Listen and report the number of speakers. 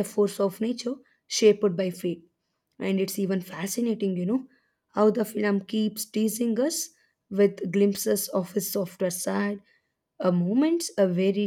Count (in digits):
1